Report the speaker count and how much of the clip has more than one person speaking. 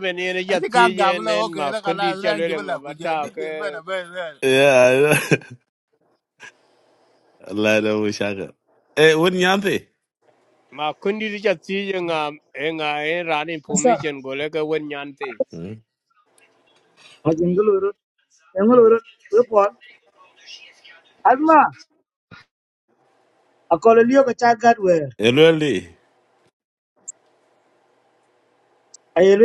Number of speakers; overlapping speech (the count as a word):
four, about 11%